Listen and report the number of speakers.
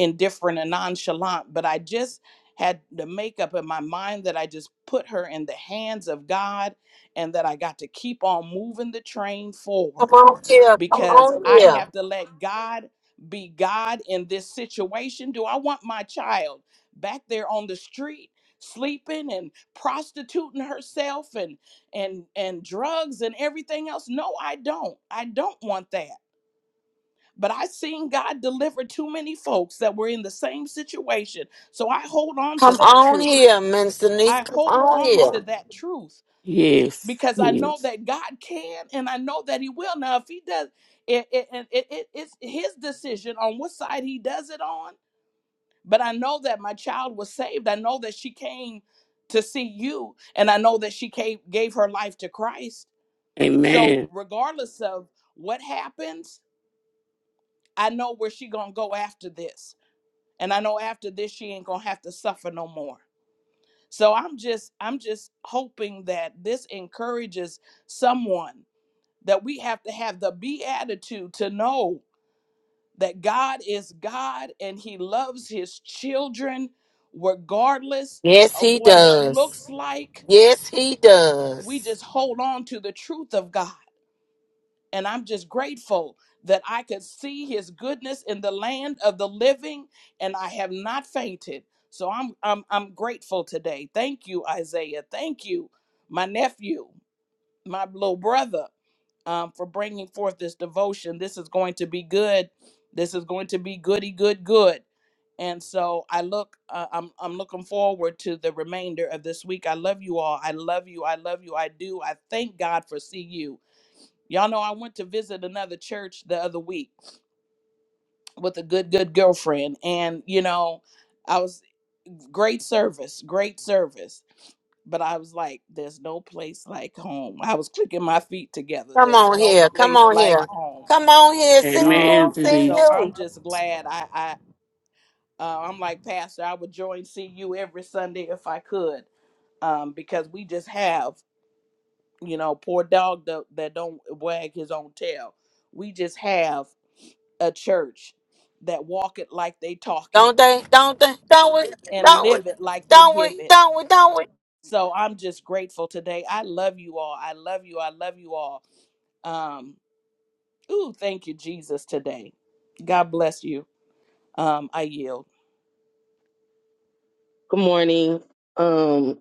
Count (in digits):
4